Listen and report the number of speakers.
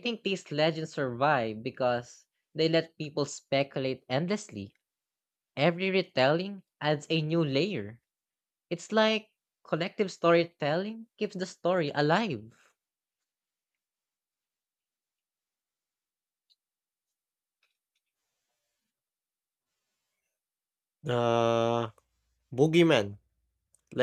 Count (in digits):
2